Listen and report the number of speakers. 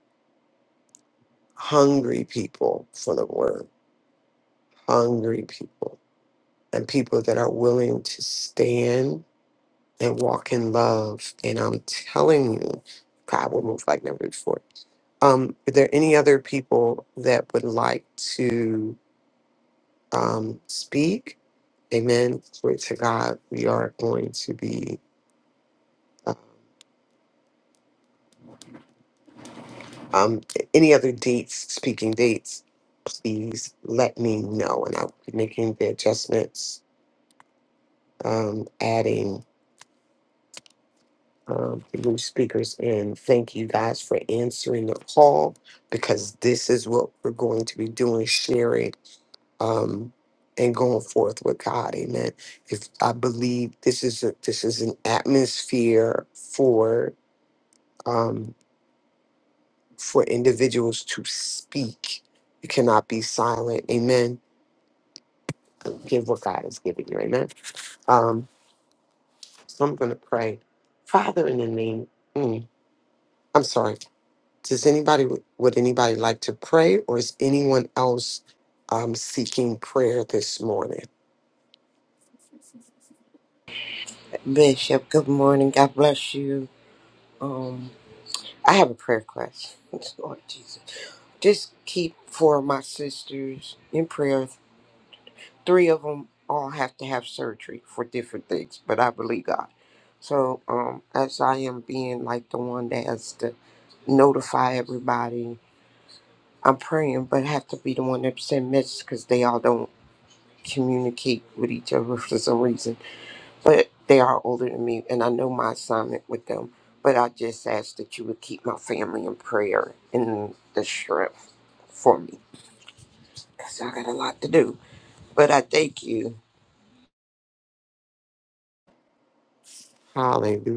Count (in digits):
2